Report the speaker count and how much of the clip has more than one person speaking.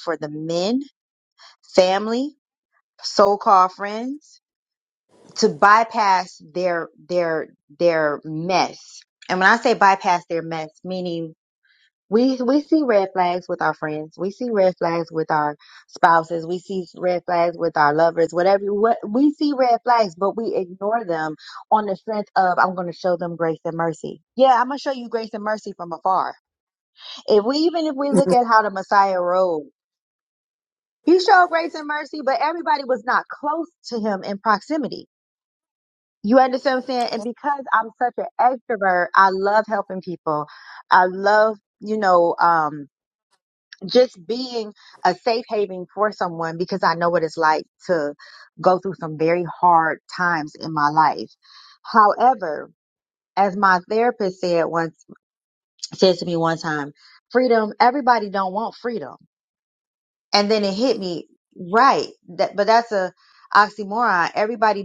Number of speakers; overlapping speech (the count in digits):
1, no overlap